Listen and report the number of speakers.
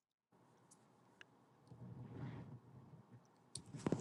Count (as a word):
zero